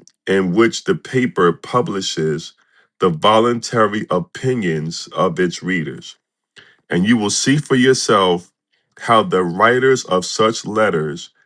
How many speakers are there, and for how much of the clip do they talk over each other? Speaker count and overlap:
1, no overlap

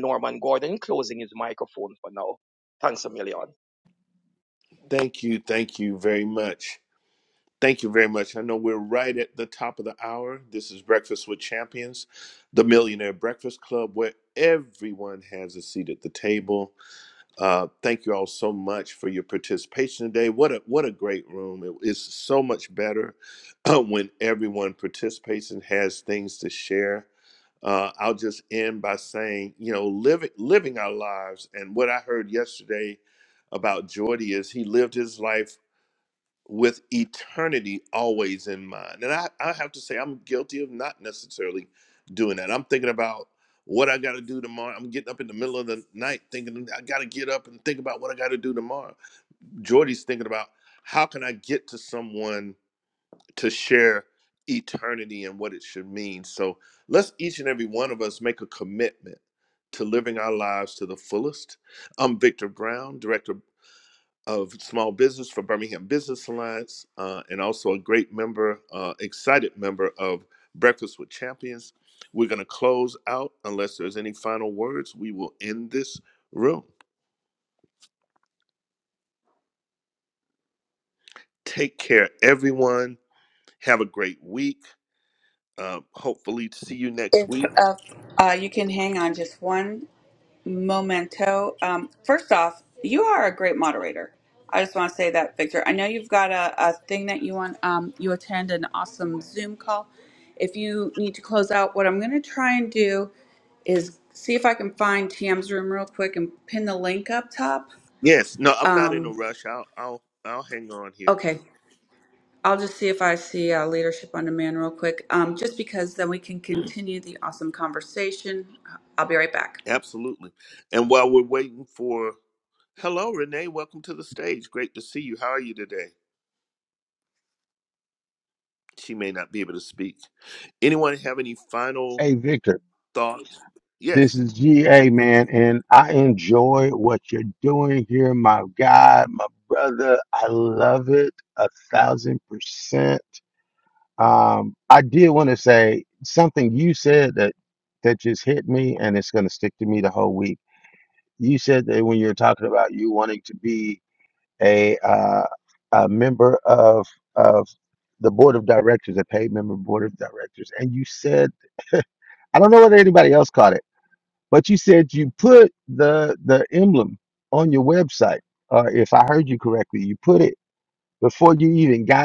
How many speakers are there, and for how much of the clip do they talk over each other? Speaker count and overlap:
4, about 1%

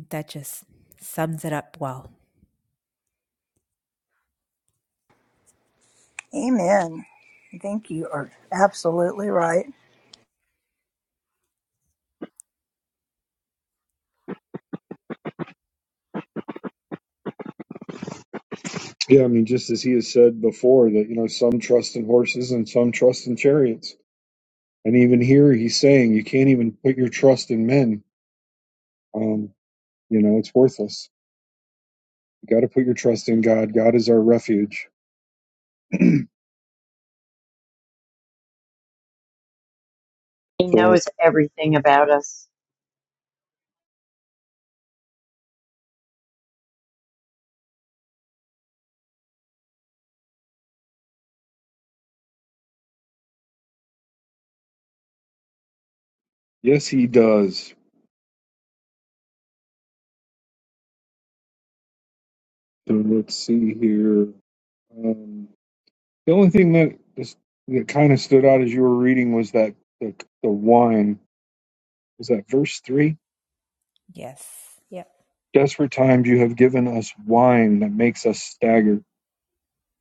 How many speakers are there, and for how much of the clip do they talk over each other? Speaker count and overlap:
4, under 1%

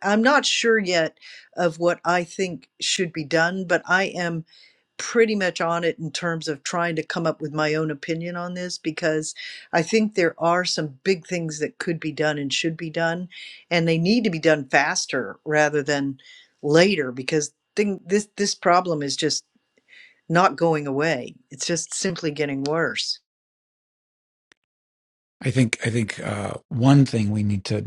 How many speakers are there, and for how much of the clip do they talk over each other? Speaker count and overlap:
2, no overlap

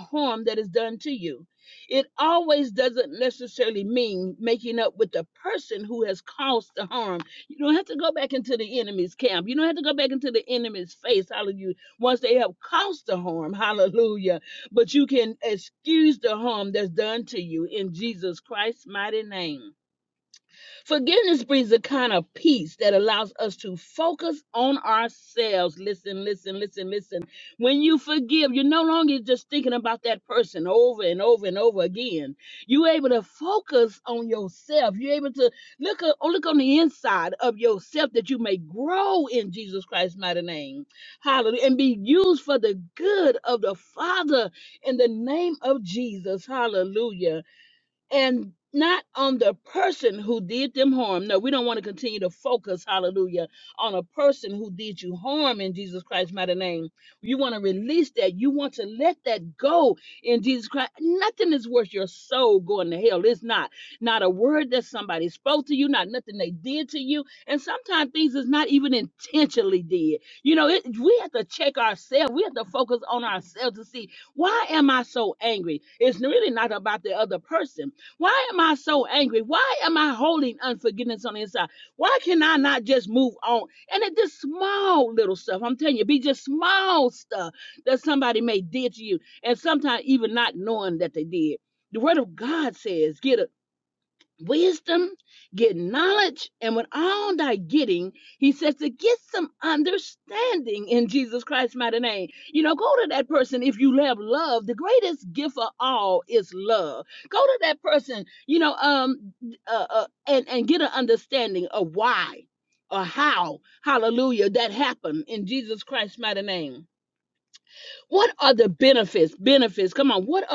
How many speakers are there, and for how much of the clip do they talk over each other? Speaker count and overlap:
1, no overlap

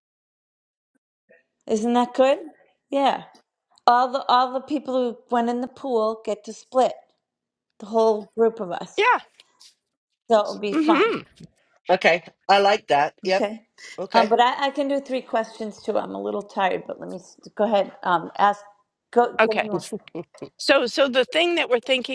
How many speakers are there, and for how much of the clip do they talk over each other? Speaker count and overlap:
3, about 5%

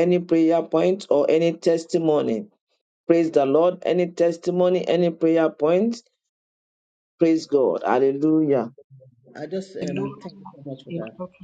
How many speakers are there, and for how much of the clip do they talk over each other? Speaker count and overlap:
2, no overlap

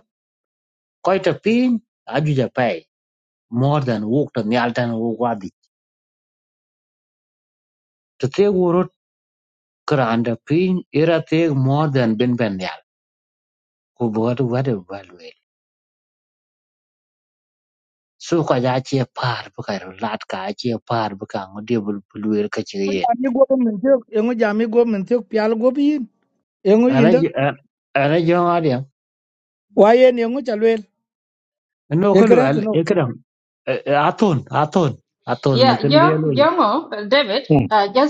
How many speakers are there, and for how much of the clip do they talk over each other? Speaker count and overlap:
3, about 6%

